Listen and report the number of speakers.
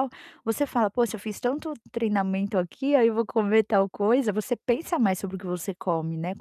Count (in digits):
1